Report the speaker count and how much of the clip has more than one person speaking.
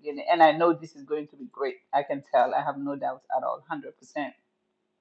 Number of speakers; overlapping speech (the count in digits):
1, no overlap